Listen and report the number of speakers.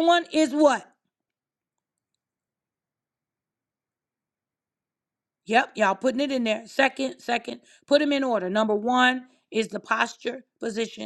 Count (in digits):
1